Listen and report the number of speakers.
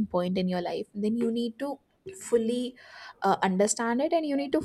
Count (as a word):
one